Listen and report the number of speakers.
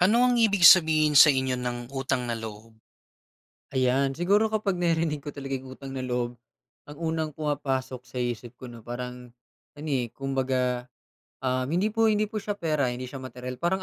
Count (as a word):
two